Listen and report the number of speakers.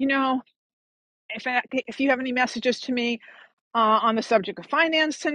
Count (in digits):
1